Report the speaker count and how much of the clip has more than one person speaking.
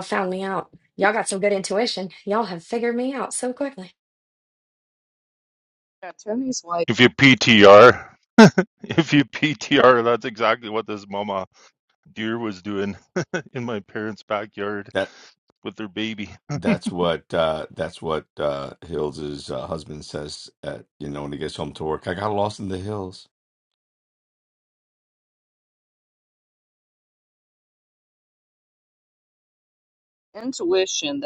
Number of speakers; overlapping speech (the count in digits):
4, no overlap